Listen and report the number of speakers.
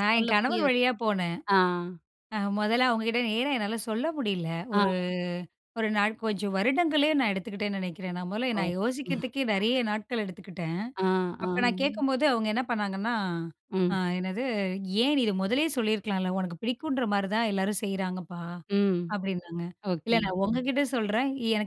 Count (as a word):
two